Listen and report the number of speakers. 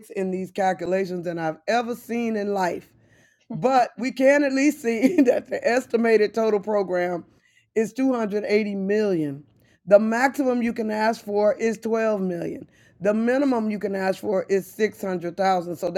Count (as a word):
one